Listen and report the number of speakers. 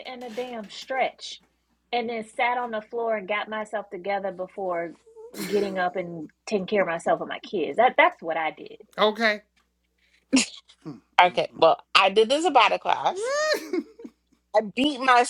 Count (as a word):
three